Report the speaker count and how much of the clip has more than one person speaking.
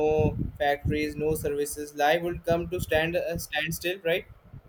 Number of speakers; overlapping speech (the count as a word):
one, no overlap